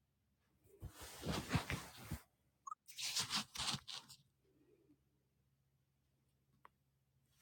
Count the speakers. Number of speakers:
zero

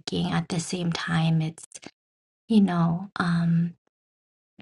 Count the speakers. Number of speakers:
one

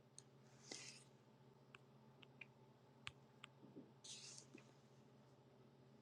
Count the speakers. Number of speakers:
zero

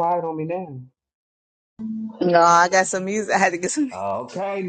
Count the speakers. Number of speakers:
two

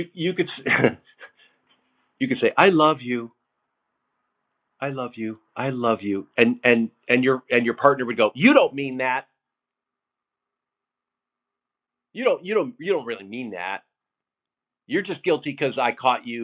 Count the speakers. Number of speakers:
one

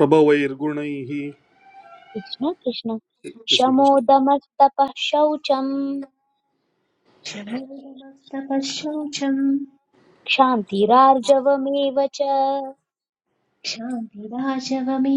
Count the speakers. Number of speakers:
three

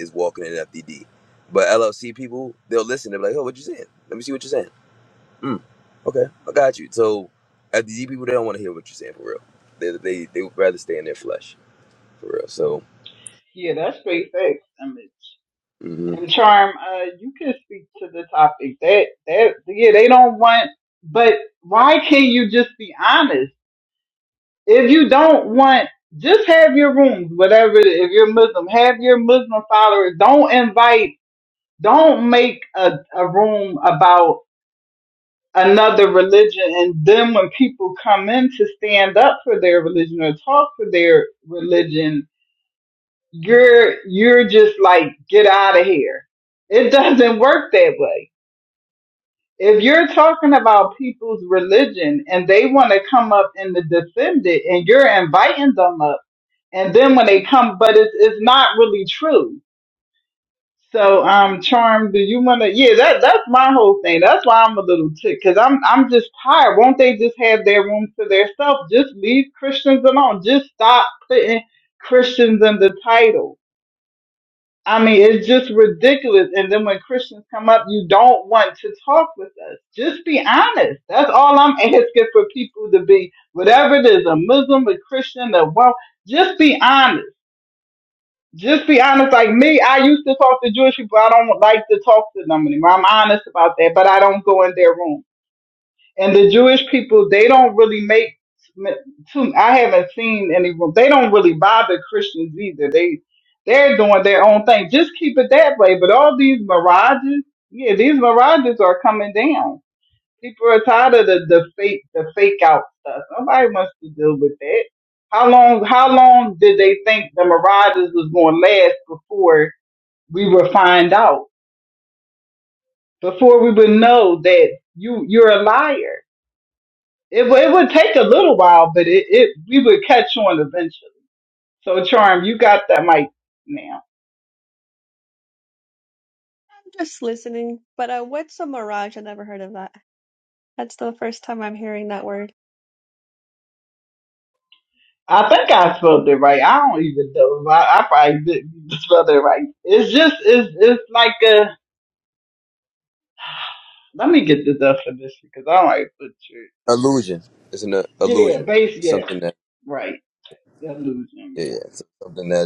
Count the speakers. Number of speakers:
three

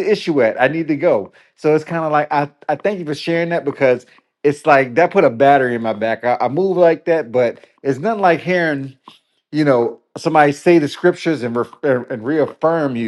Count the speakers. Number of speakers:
one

